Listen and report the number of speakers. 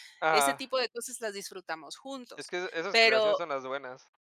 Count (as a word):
two